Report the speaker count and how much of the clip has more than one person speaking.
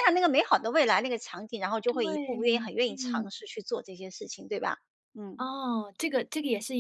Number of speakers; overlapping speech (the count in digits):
2, about 20%